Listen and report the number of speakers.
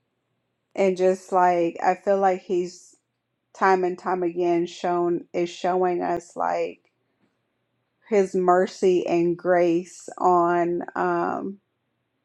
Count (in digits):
1